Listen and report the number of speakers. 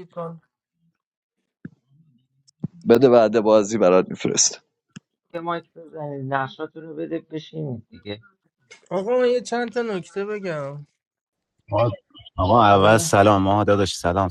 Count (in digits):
4